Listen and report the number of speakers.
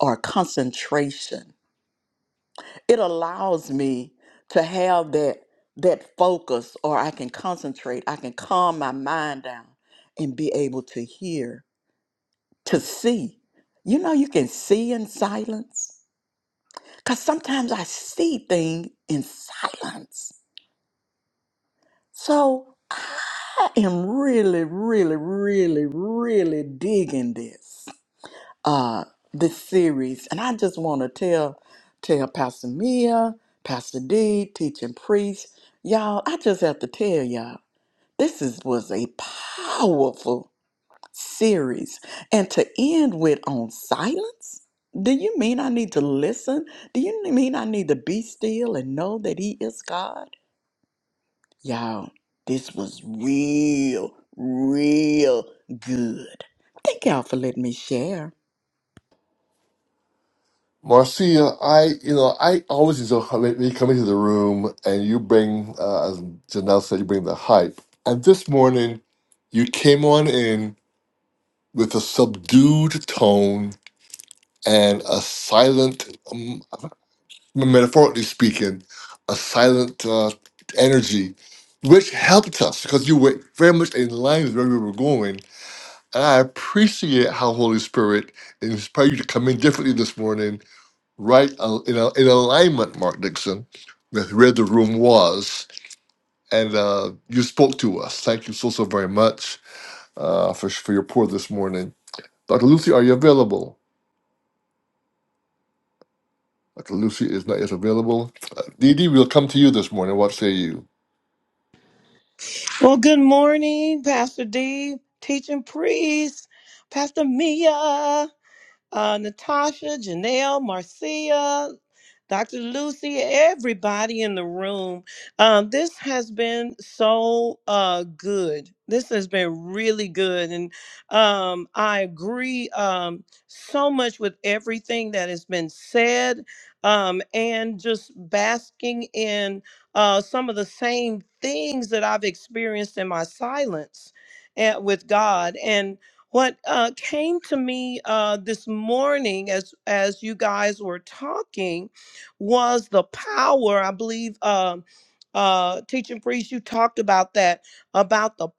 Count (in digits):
3